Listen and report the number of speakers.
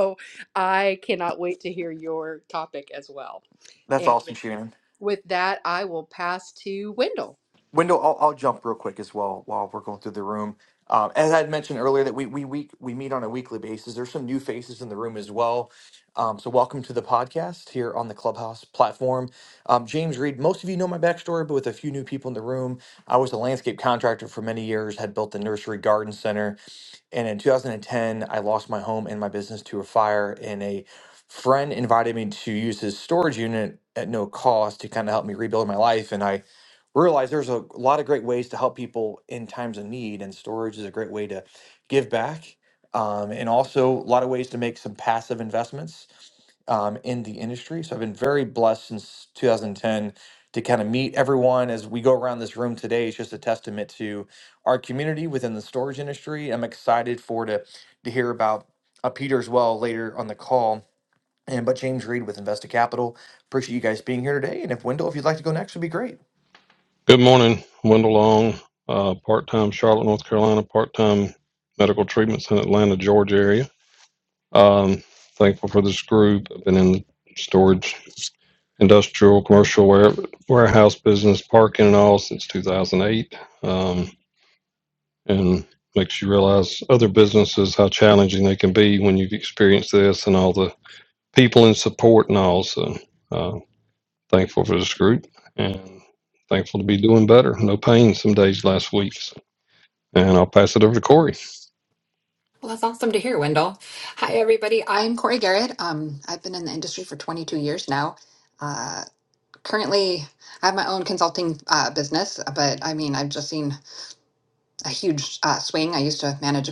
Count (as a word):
four